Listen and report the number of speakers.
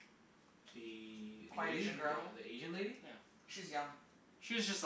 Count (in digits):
3